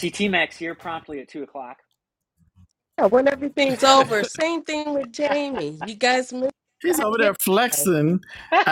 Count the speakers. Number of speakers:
3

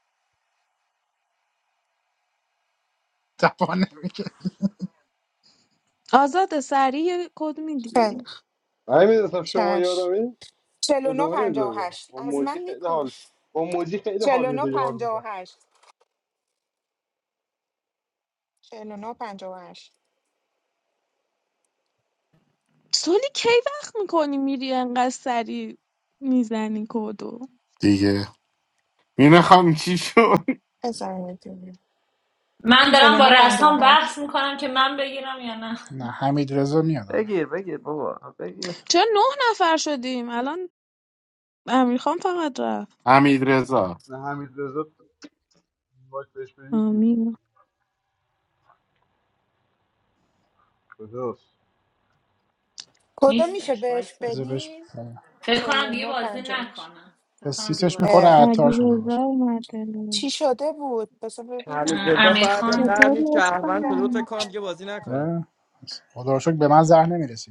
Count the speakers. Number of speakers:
9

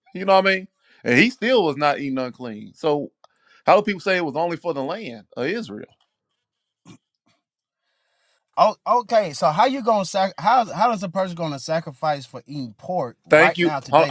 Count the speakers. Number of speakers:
2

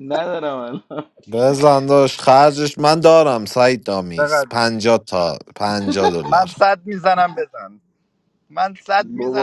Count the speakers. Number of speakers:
3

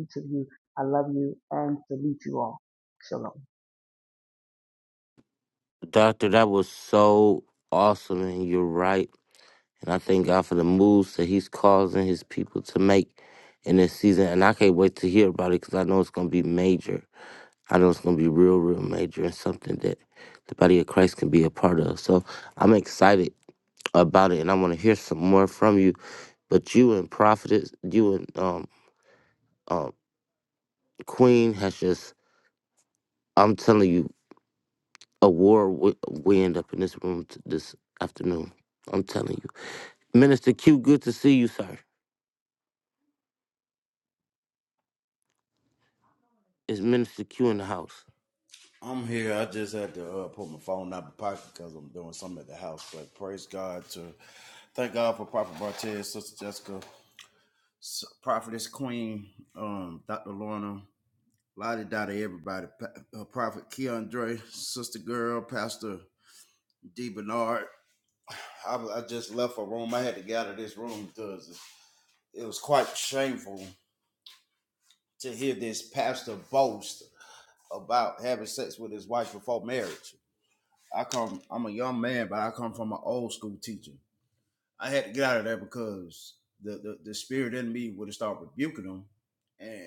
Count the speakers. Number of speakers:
3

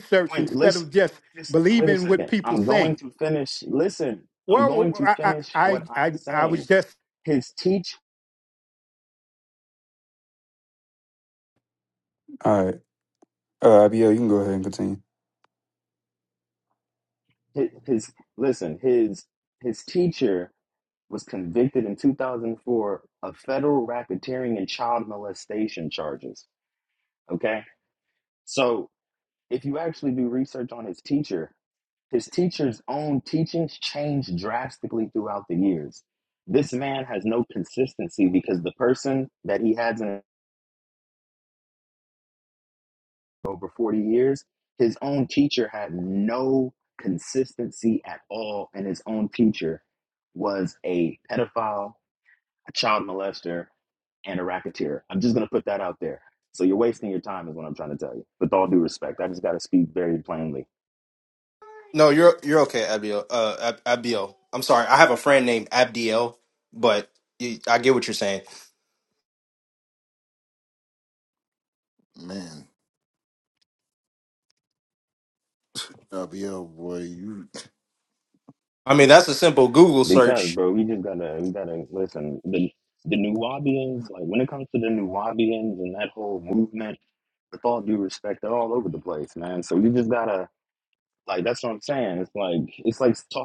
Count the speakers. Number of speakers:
5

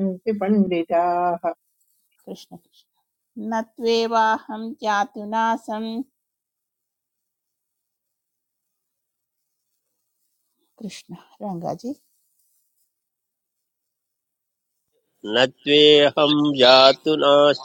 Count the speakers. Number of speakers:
3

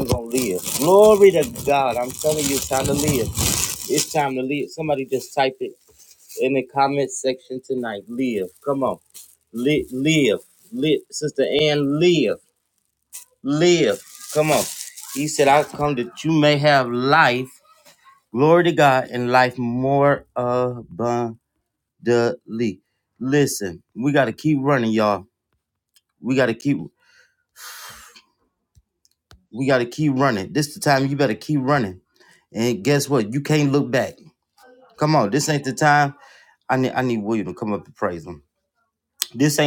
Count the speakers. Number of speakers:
1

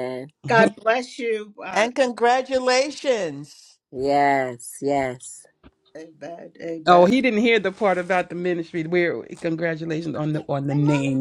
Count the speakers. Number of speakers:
4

